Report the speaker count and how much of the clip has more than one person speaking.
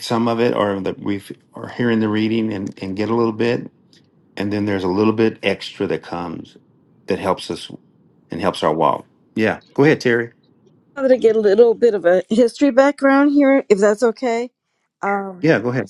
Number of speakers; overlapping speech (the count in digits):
2, no overlap